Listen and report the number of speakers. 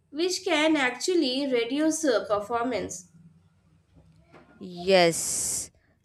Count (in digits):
2